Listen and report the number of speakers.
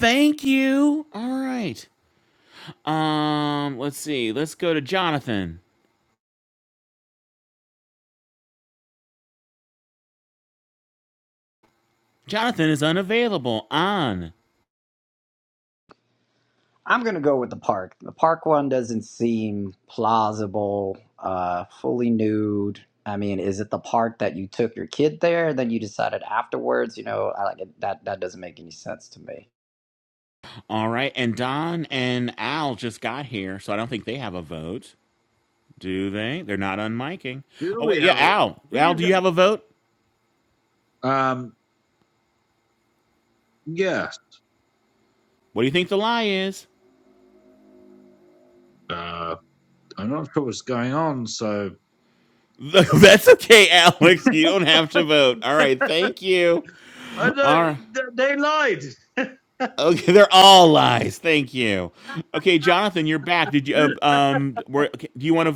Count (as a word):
three